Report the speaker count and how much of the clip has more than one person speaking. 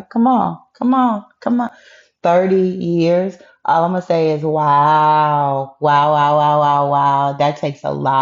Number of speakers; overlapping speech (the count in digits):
1, no overlap